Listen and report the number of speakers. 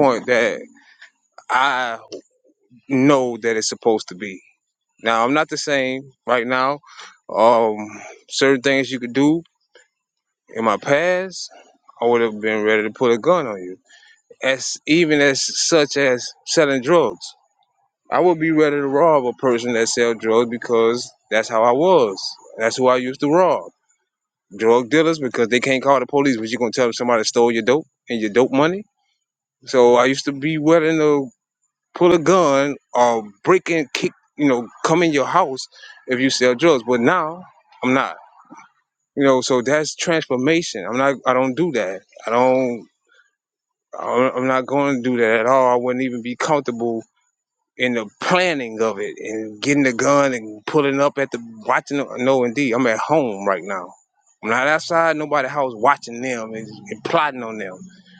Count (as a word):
one